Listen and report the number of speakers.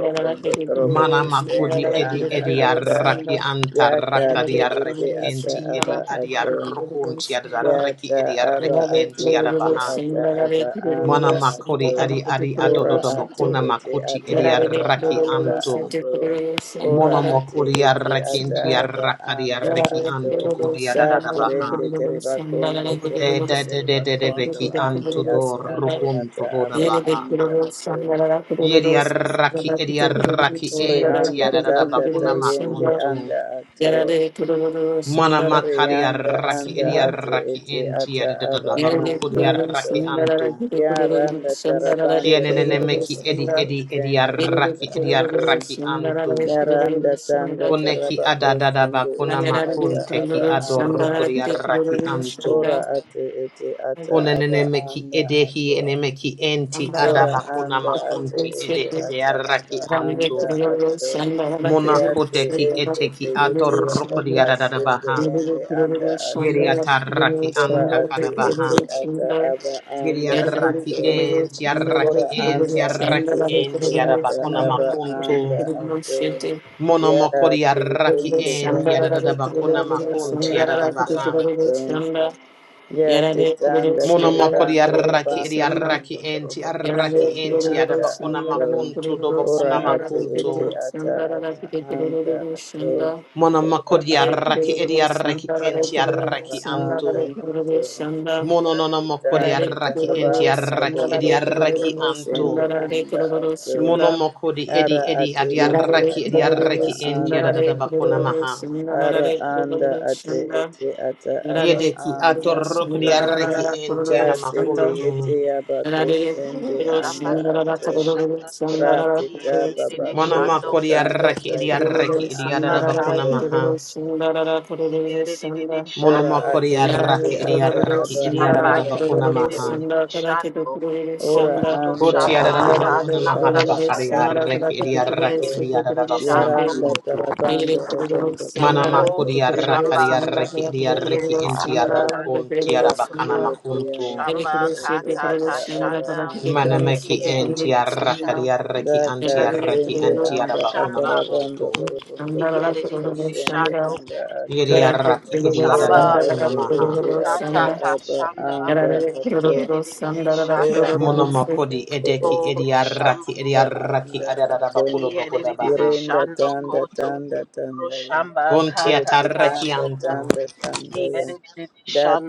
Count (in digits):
4